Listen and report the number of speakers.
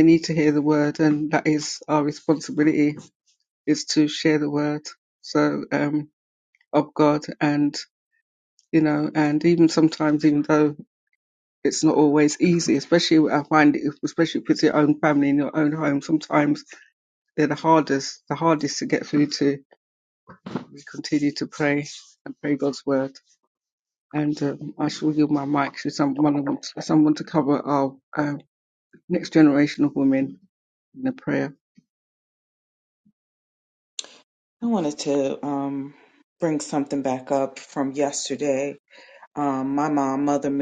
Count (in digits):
2